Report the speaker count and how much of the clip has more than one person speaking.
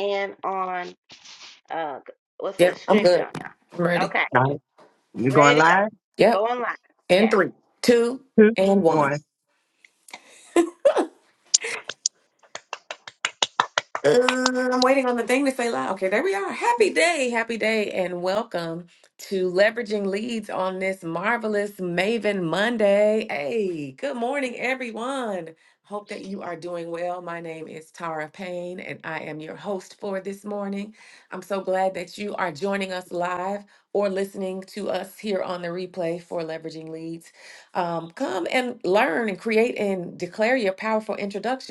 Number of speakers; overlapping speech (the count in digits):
3, about 5%